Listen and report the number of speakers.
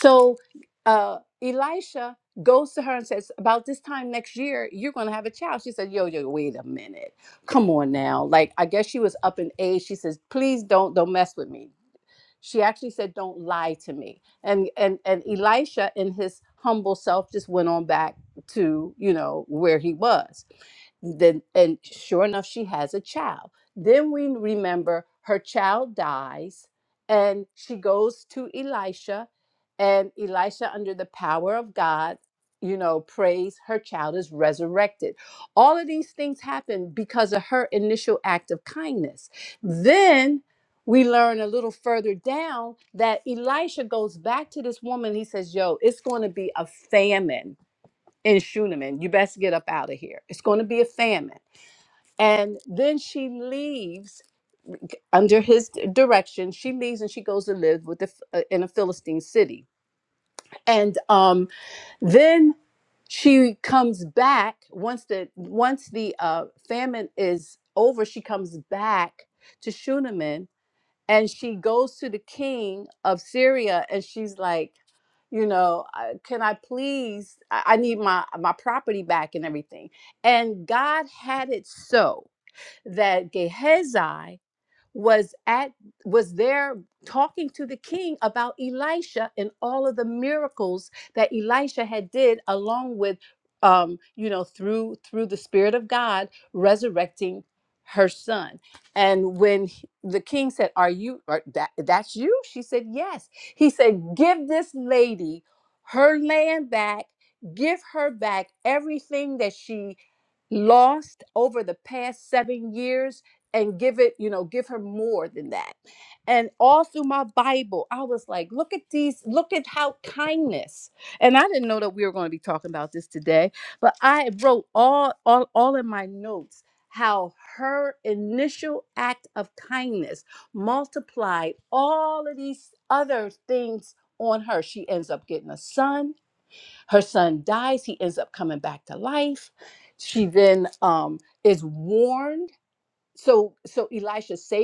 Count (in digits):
1